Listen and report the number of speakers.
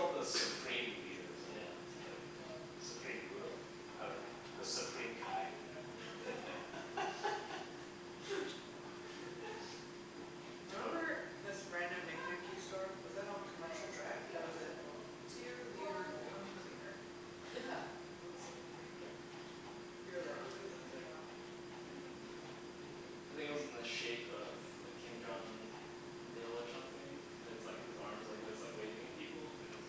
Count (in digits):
3